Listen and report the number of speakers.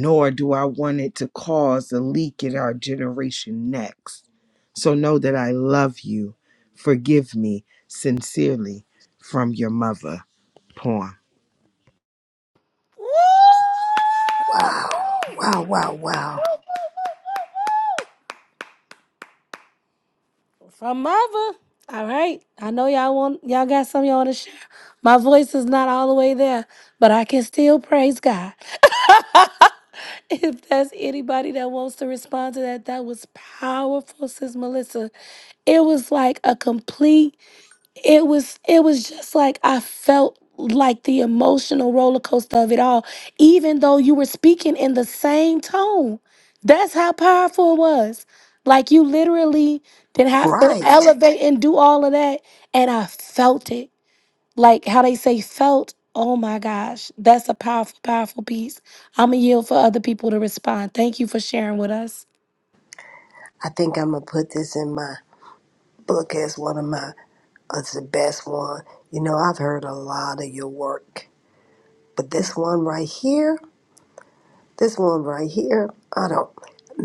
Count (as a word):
three